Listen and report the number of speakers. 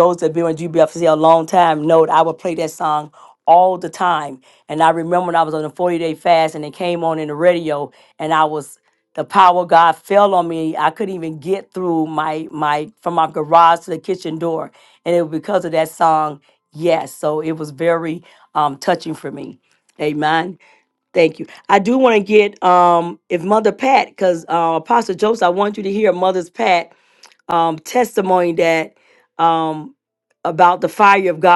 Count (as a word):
one